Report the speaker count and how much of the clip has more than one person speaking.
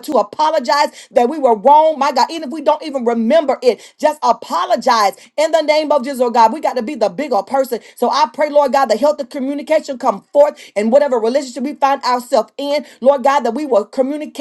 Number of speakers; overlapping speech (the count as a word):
one, no overlap